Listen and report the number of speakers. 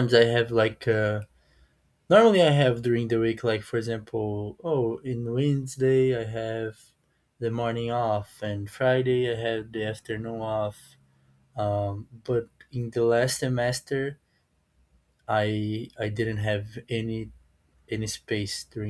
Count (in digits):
1